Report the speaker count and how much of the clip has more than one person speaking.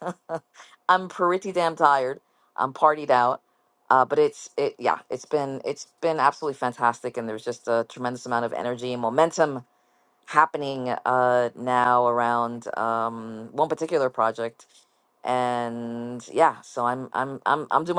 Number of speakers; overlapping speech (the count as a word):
one, no overlap